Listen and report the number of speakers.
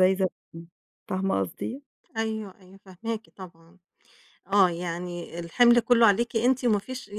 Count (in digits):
2